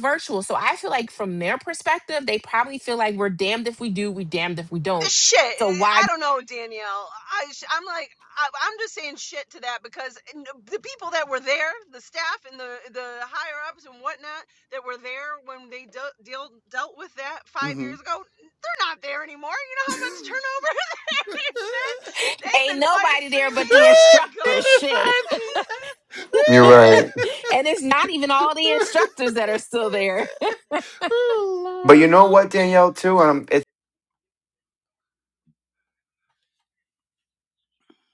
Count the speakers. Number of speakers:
four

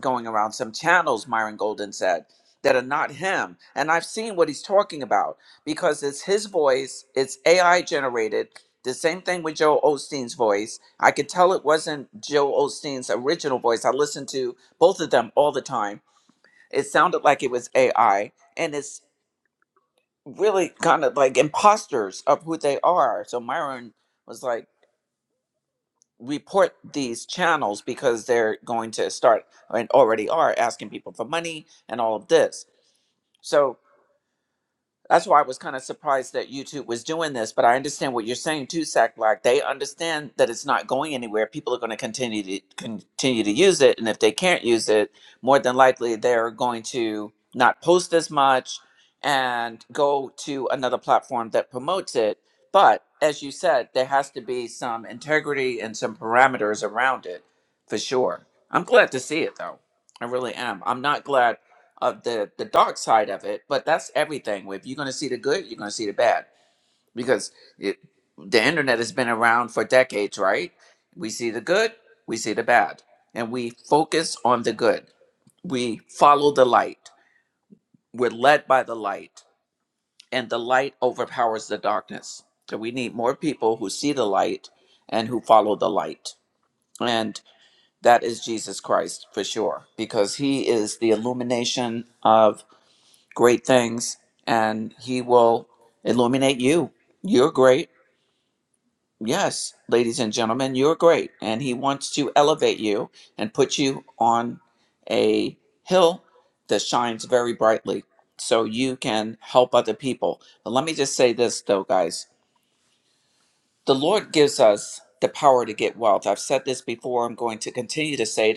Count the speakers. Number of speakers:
one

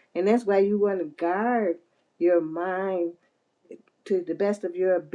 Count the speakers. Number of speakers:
one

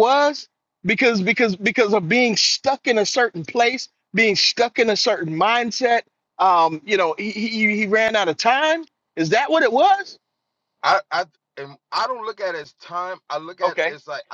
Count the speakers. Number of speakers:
two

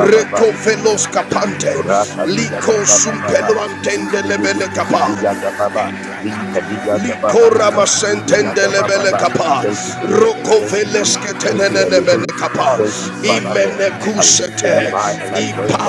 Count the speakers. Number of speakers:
two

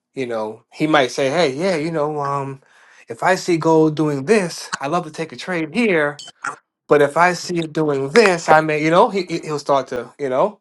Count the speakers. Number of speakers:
one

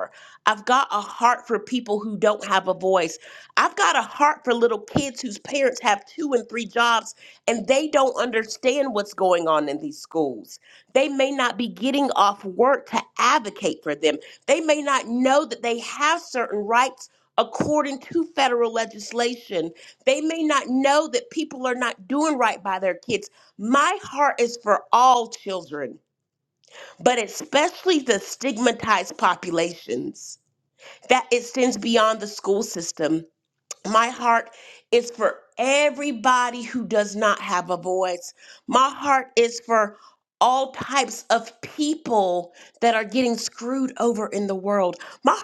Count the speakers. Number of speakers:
one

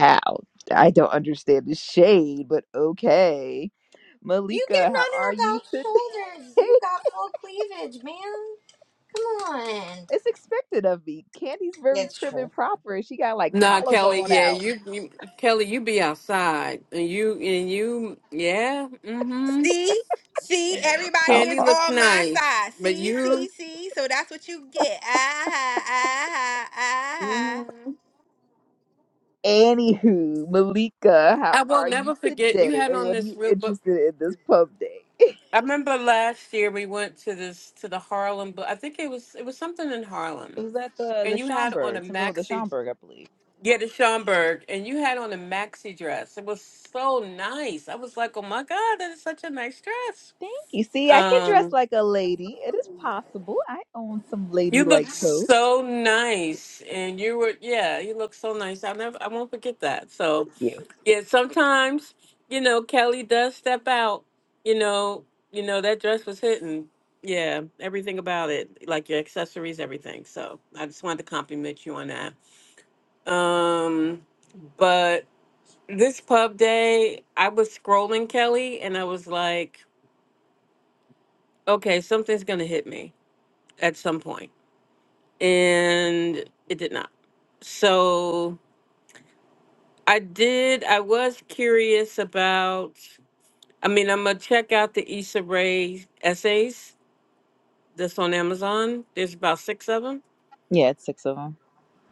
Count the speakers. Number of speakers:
four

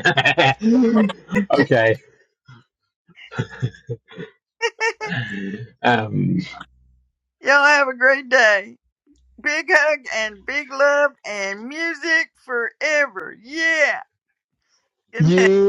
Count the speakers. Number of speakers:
two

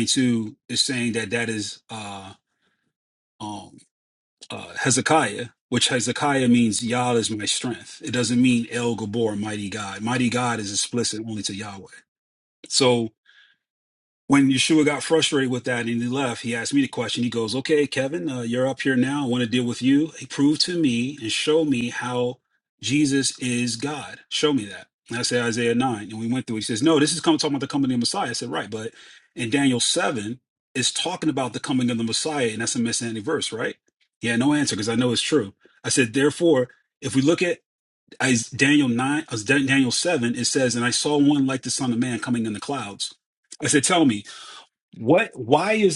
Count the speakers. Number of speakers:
one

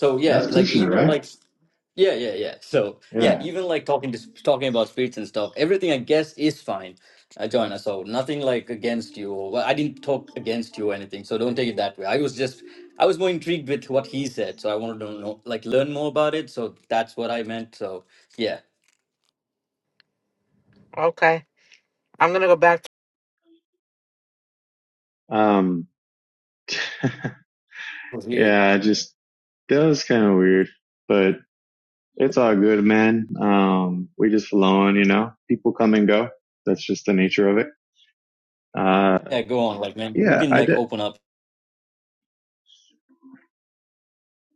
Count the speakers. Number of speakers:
three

